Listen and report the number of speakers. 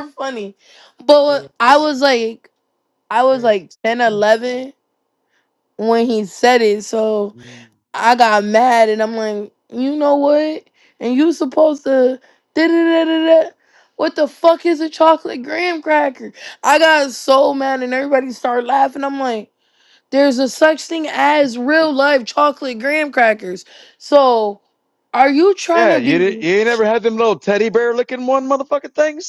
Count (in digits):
2